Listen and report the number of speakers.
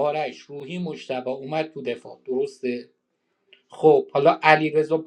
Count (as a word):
one